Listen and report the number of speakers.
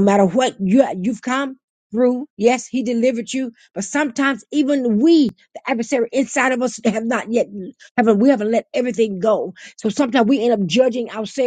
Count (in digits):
1